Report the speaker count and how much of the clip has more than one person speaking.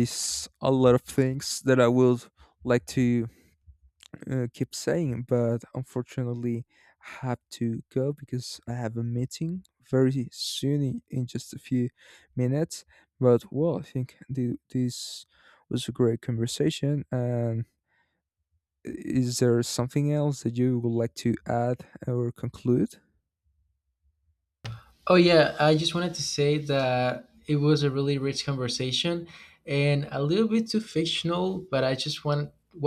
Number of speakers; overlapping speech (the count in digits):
2, no overlap